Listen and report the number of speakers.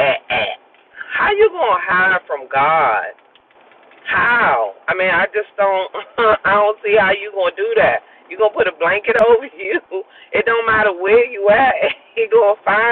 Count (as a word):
one